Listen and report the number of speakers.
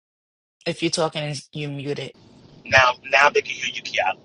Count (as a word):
two